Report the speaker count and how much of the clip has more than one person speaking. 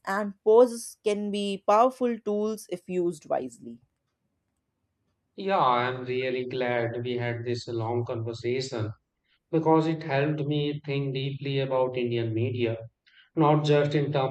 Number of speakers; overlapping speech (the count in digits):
2, no overlap